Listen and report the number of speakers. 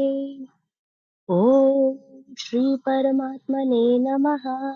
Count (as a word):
one